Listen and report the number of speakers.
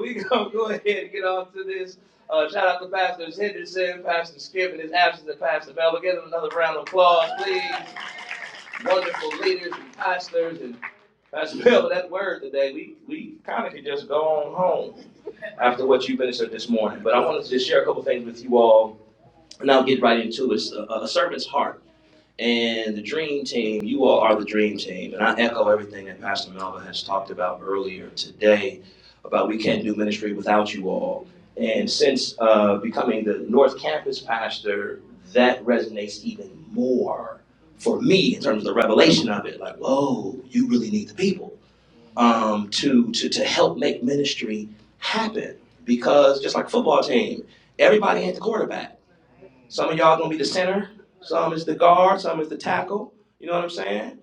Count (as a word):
one